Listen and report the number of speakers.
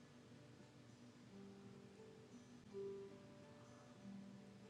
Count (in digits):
0